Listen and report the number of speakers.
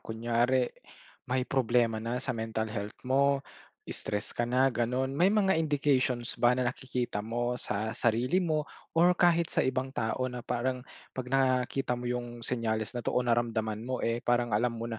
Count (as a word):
one